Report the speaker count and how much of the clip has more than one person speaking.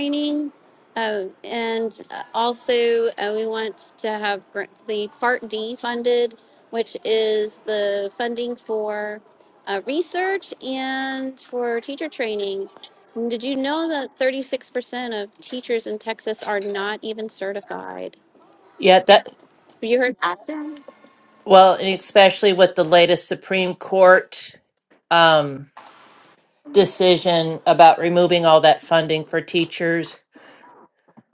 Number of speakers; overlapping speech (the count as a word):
two, no overlap